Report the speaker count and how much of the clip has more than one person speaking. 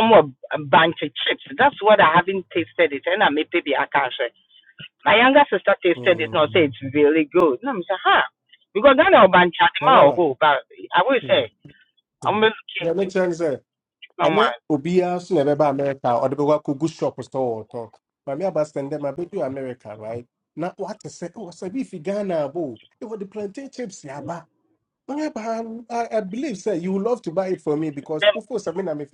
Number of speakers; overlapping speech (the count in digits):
2, about 7%